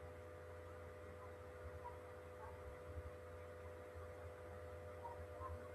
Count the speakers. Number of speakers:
0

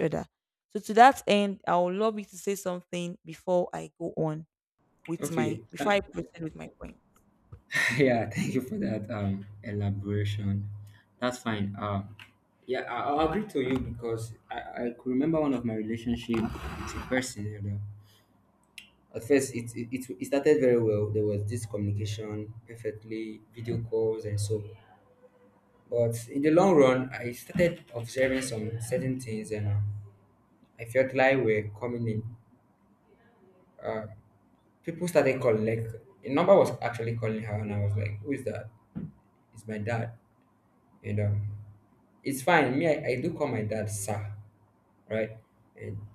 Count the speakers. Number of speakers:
2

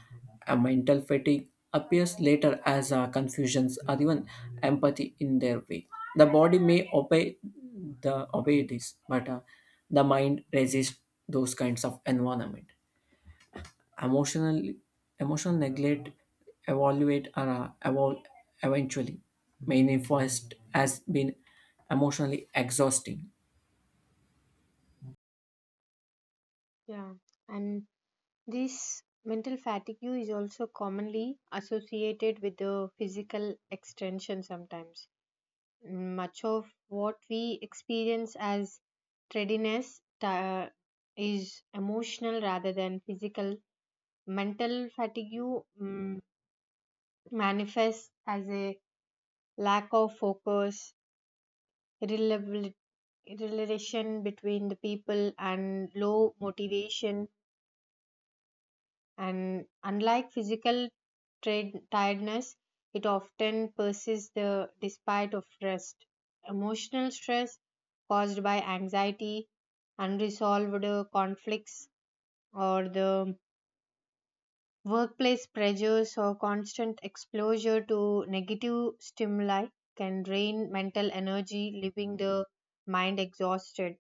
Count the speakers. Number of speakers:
2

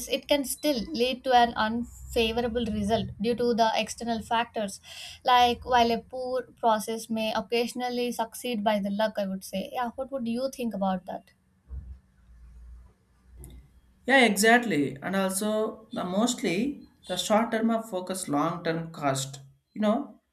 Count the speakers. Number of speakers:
2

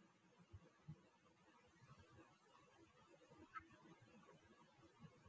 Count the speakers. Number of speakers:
0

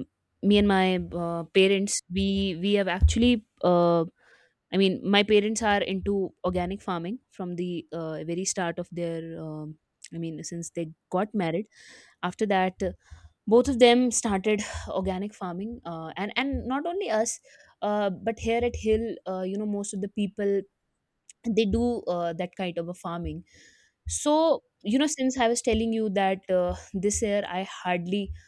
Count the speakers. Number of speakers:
1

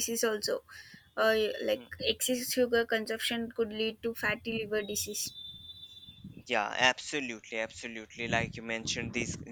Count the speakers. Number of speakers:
2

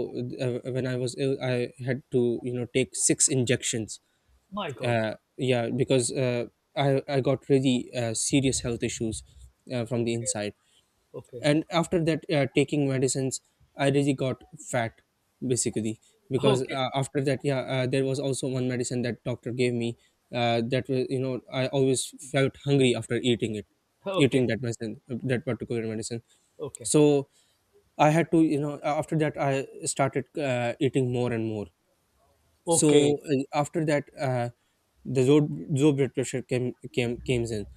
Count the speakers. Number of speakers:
2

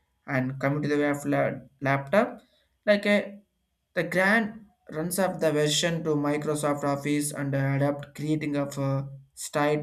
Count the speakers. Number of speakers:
1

